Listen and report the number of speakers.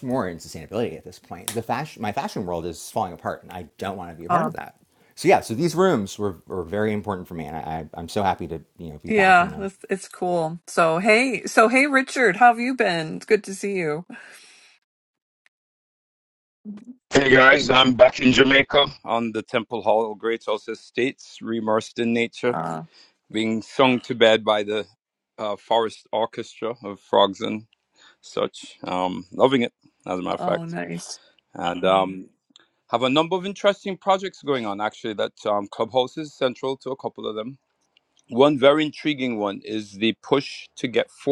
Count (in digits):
3